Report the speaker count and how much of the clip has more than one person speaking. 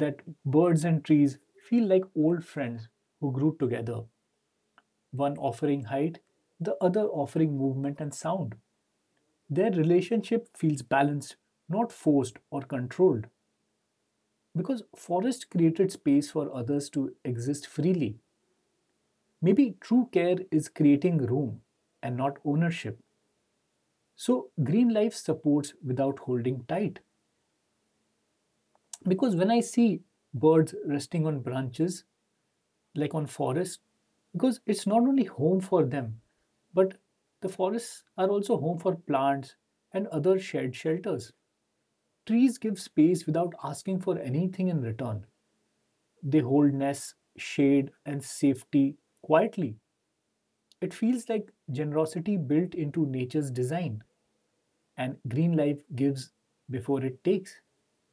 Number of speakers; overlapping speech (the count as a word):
one, no overlap